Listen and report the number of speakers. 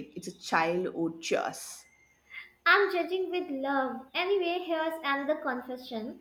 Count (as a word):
two